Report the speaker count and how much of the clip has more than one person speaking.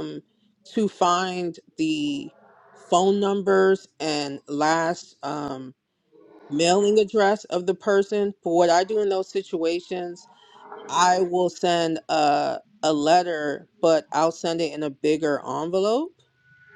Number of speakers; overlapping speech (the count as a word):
one, no overlap